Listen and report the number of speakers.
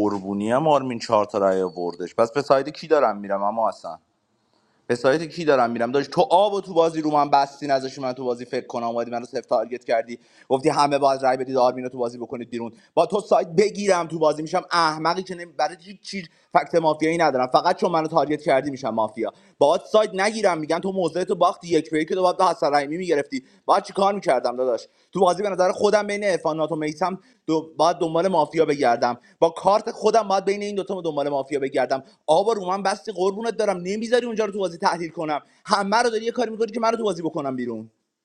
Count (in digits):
1